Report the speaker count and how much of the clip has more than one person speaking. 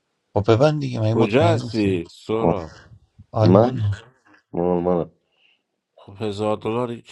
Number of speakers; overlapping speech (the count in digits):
3, about 19%